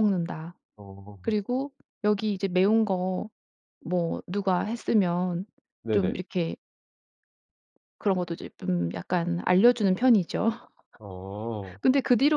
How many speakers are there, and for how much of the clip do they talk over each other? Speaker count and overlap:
2, about 2%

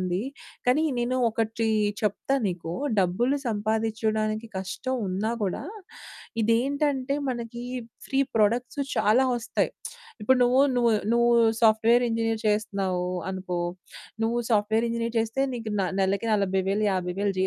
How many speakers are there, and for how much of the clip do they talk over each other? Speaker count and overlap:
1, no overlap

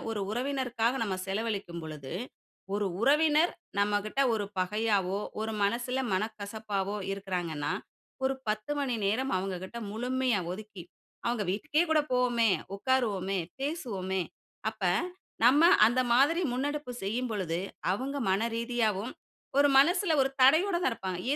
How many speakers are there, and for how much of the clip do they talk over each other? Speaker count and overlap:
1, no overlap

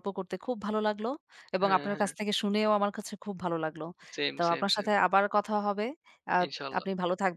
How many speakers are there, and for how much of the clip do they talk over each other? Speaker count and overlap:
2, about 15%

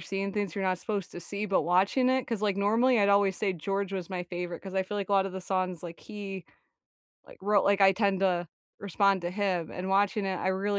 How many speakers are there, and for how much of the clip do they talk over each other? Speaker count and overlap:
1, no overlap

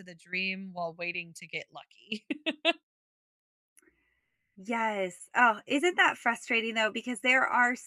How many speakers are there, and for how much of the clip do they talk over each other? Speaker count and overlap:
2, no overlap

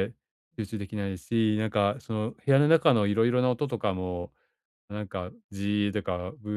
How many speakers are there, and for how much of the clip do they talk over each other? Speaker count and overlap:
1, no overlap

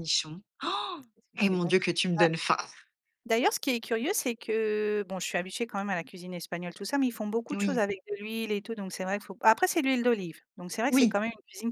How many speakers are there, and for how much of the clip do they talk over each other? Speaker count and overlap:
2, about 7%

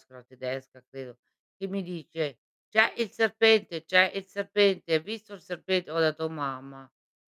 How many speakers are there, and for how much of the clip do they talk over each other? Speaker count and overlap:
1, no overlap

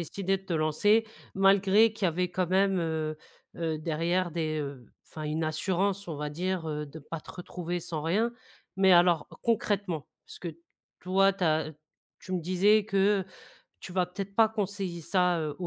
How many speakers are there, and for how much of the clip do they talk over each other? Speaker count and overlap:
1, no overlap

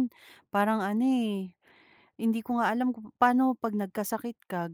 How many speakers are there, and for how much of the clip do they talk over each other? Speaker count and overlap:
1, no overlap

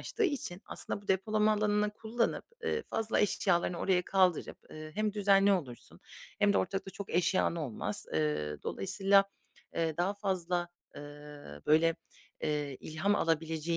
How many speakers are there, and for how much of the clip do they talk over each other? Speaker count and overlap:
1, no overlap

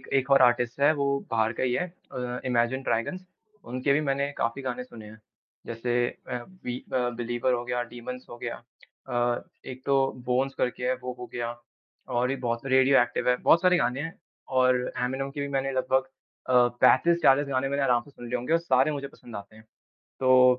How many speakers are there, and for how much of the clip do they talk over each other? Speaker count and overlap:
1, no overlap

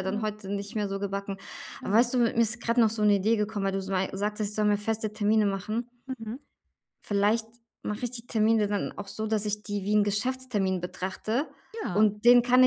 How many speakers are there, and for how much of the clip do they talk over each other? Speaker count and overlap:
2, about 5%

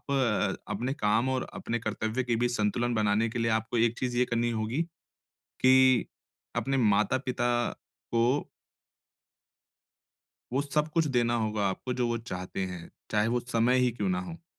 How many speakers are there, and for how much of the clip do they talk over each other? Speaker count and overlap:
1, no overlap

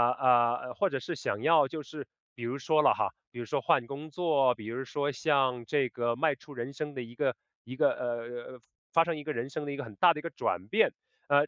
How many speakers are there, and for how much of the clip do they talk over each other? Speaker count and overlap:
1, no overlap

